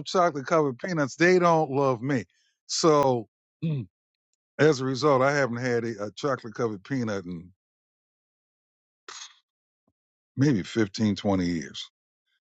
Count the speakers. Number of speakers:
1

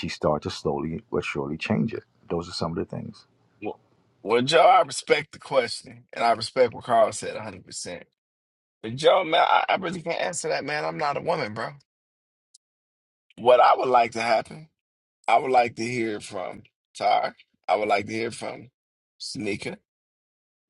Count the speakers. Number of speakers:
2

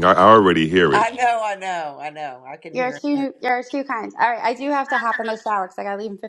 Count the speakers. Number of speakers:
3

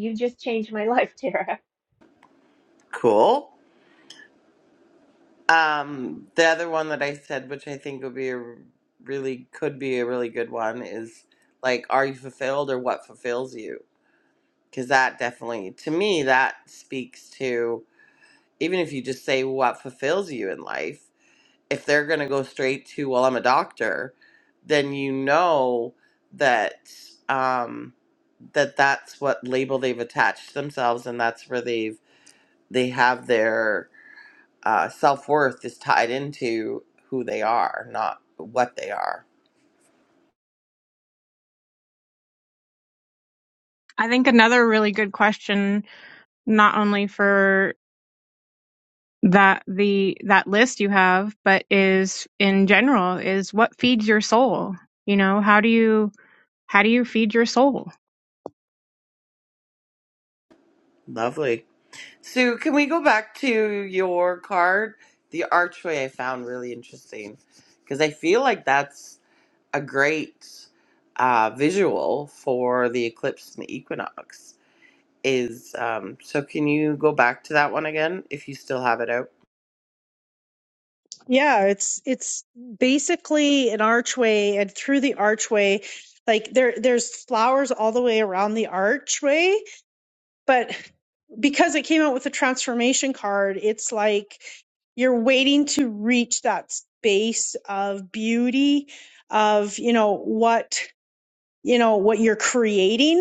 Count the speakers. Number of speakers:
4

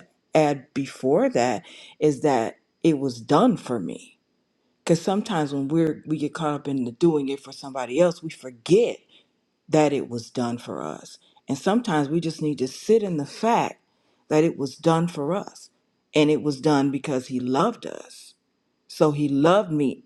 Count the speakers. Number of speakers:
1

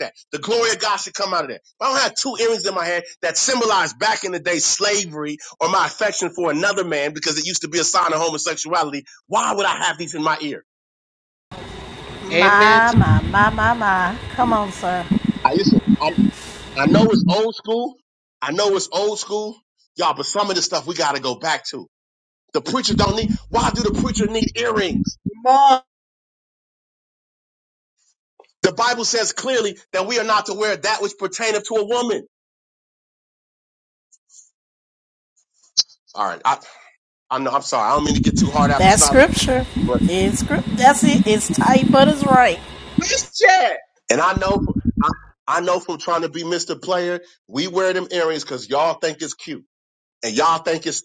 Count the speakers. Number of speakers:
3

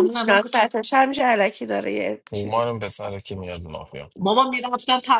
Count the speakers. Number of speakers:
3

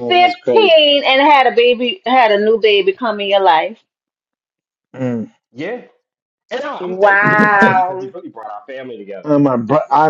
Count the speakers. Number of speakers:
3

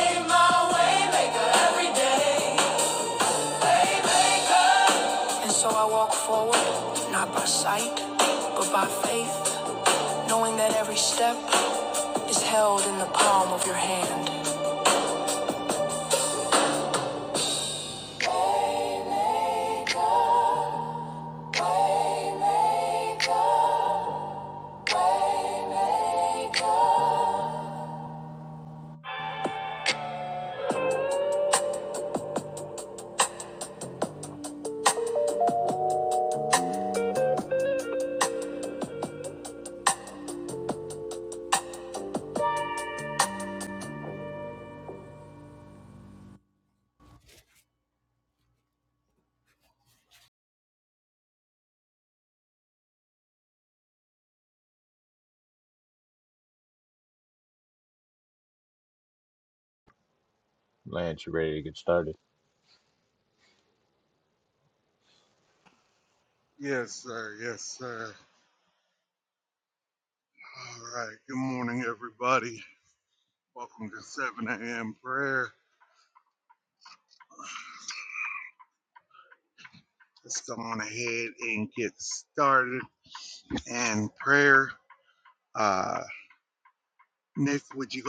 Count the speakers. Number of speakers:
3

